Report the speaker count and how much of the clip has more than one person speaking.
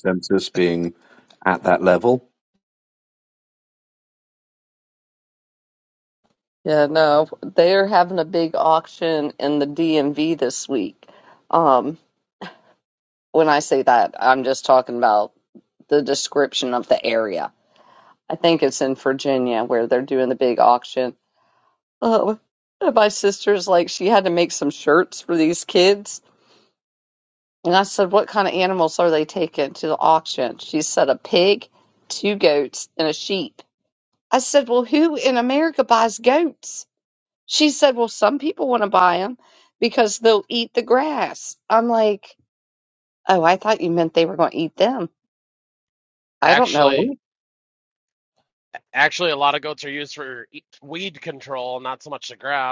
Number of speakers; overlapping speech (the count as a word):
three, about 1%